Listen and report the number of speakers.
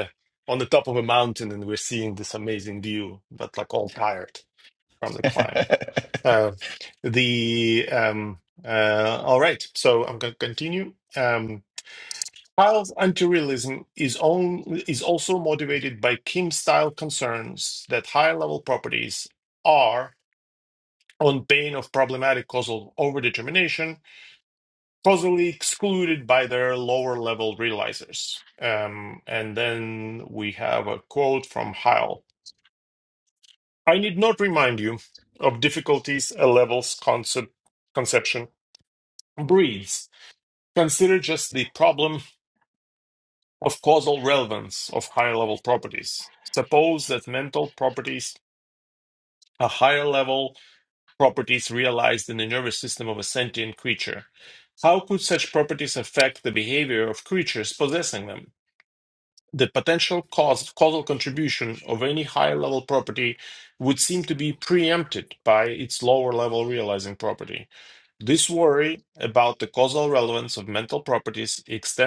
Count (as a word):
one